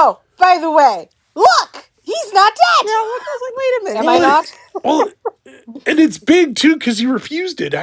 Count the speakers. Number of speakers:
3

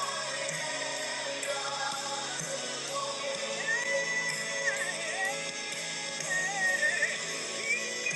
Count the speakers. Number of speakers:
0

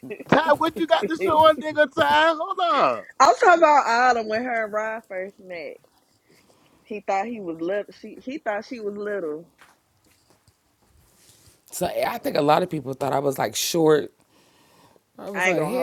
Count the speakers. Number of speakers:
3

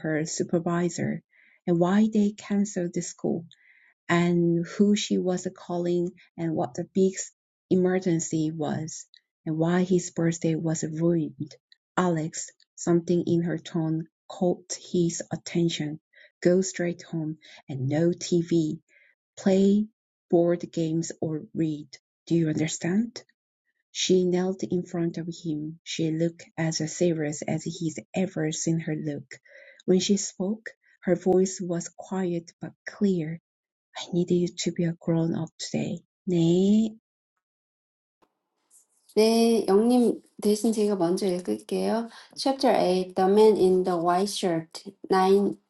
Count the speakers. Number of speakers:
2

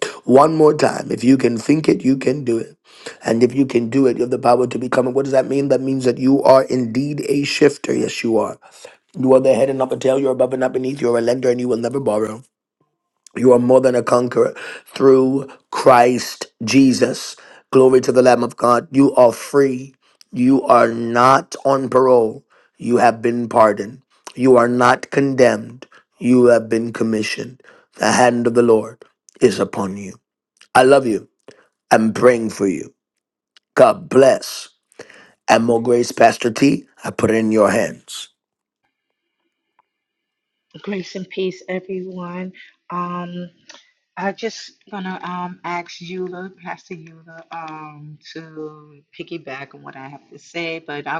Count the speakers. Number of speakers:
2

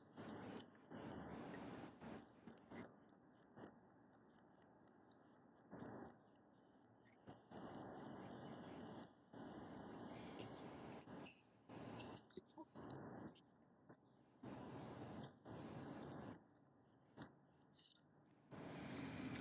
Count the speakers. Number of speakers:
0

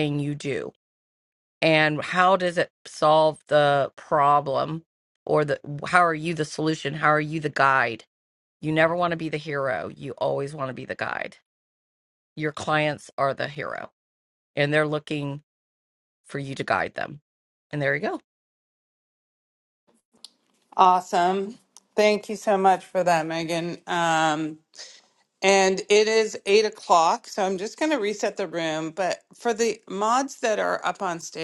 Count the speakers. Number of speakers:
2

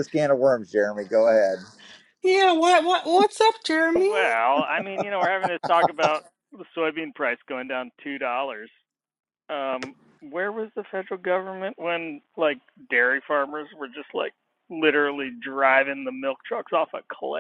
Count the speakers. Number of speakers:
3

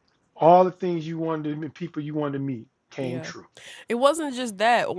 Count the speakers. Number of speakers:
2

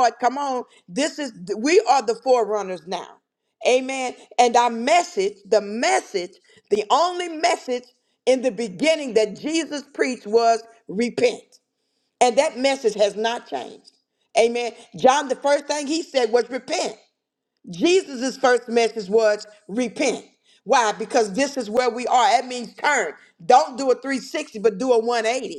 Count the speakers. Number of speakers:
1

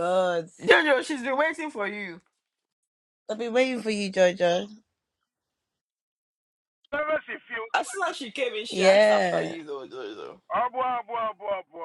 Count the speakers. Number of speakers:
3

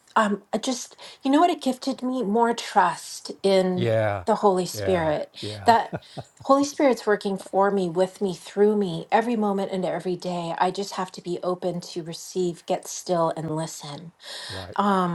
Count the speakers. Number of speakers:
2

